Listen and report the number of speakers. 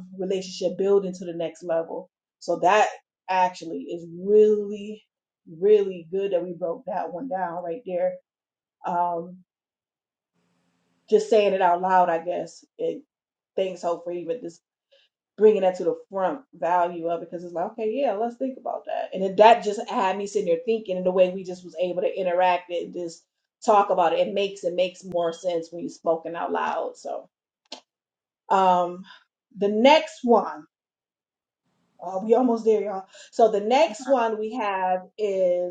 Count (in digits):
1